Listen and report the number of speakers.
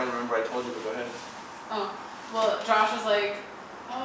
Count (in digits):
2